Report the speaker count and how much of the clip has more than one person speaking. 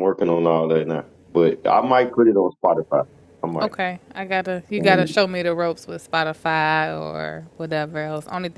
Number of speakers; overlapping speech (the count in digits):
2, about 4%